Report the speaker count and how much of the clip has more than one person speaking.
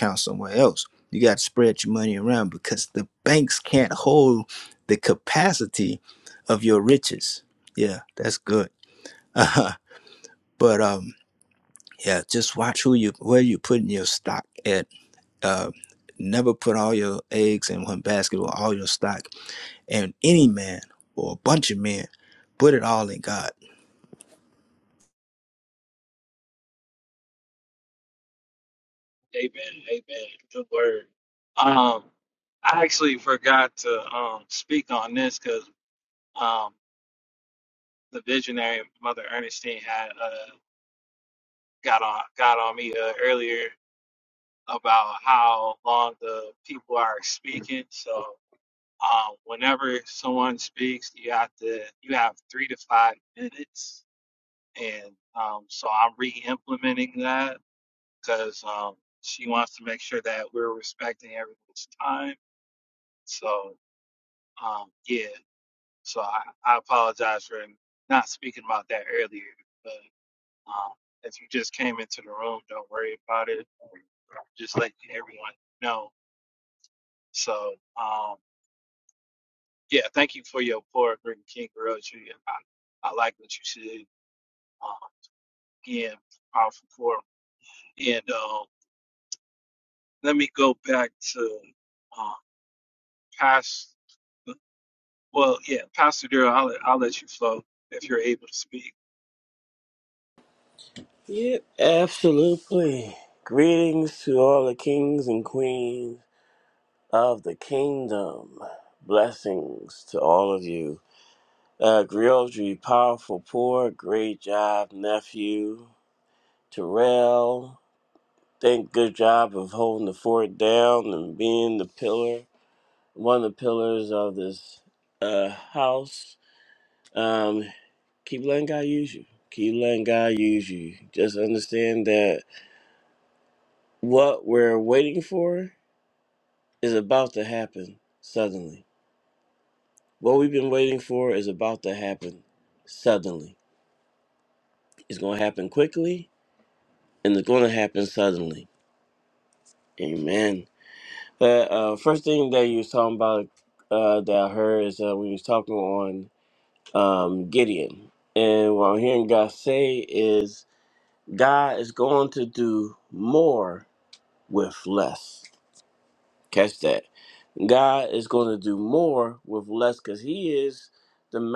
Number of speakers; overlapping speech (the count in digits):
3, no overlap